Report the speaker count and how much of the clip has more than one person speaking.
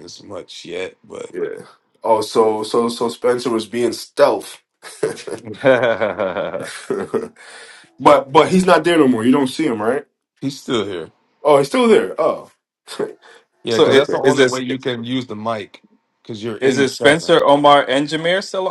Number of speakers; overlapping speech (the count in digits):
3, about 8%